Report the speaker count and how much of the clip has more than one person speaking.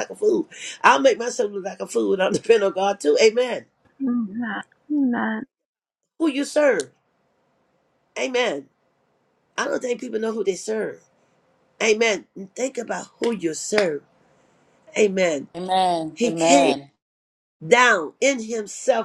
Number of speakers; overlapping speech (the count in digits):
3, about 3%